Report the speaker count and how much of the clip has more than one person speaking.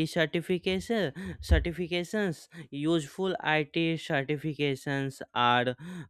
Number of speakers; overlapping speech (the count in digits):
1, no overlap